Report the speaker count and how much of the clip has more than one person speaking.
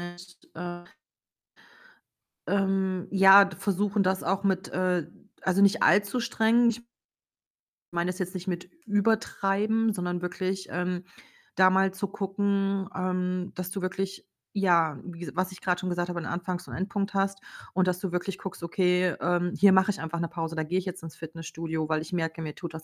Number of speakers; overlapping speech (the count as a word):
one, no overlap